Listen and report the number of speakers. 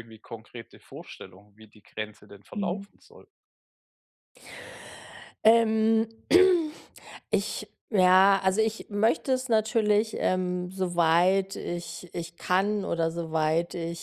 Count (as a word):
two